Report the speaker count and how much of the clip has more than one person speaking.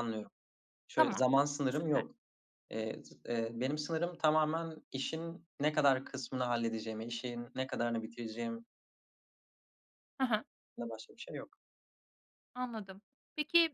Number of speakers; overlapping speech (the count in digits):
2, about 2%